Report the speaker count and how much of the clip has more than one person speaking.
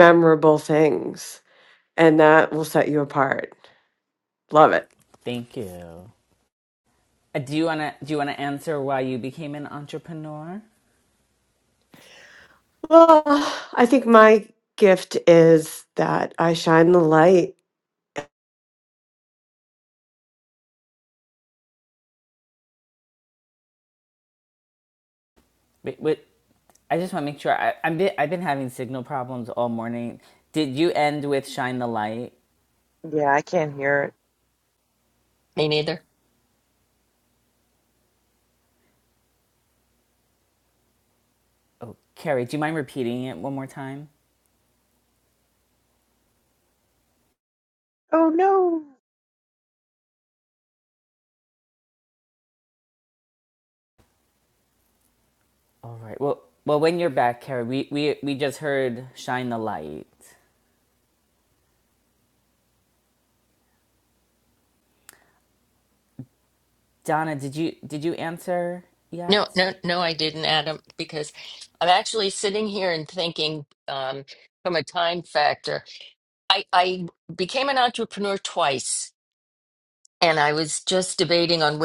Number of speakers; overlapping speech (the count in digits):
4, under 1%